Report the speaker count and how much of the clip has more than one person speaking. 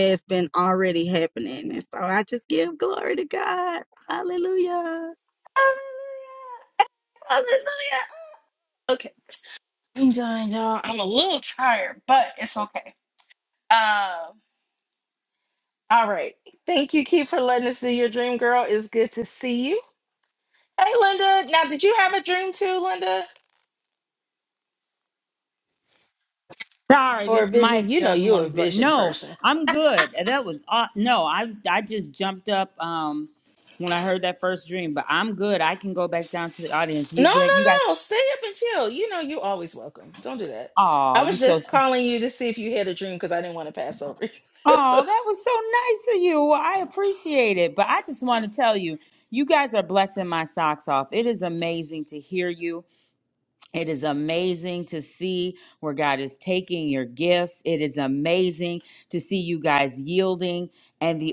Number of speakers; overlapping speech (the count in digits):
3, about 6%